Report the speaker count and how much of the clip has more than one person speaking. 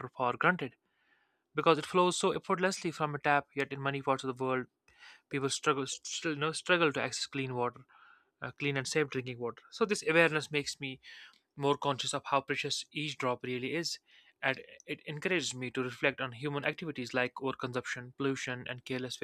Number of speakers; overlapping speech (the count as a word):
one, no overlap